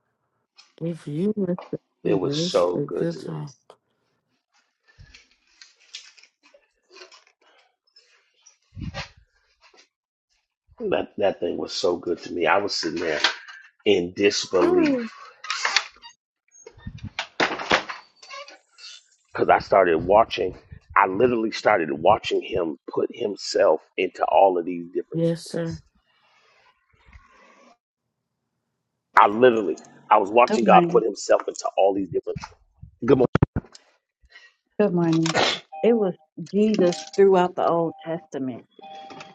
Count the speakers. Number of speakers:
three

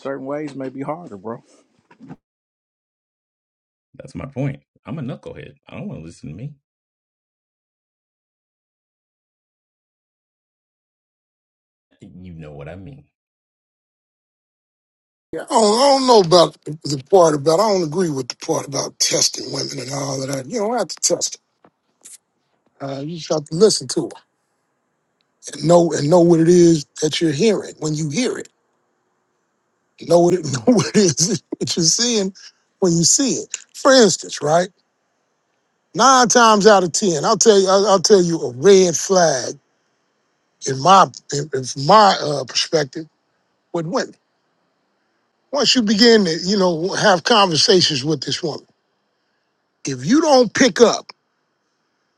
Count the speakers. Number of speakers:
three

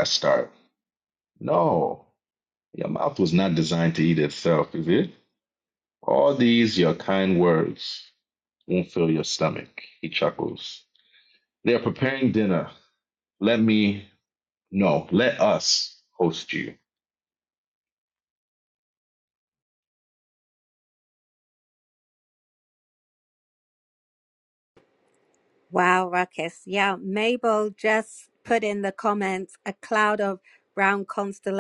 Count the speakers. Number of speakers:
two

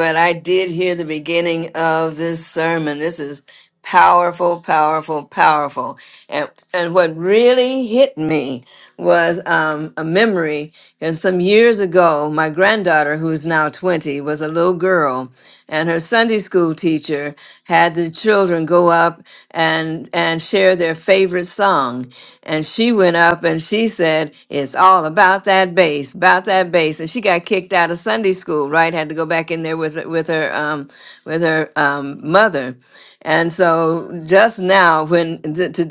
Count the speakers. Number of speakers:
one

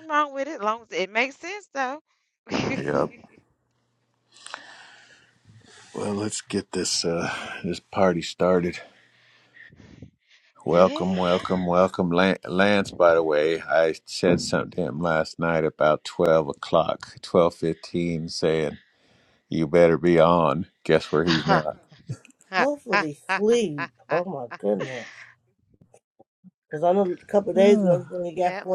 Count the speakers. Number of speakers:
three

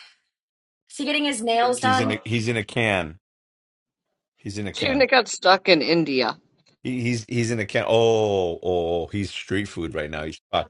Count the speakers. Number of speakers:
three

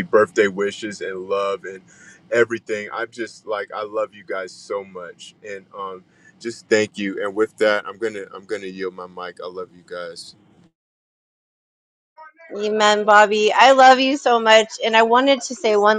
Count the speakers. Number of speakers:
two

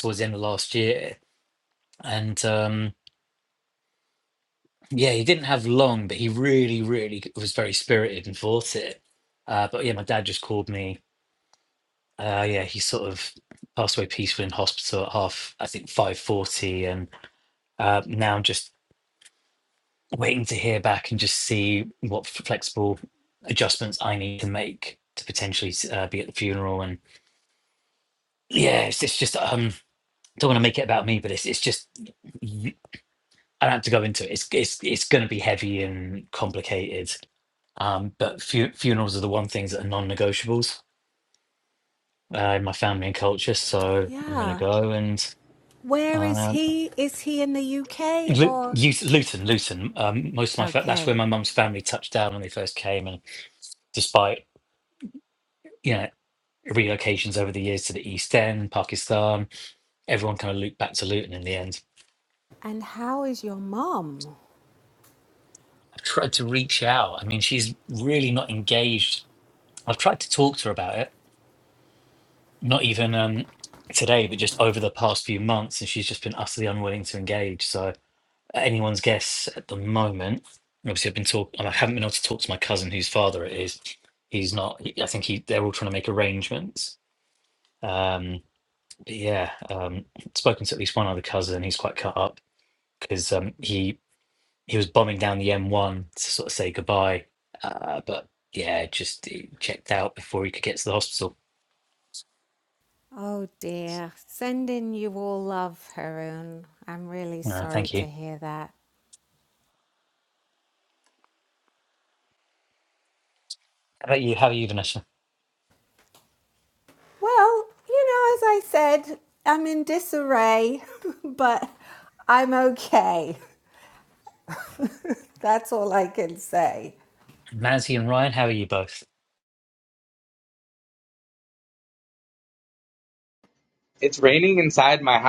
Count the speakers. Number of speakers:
three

